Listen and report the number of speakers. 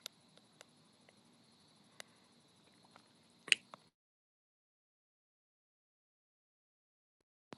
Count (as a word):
zero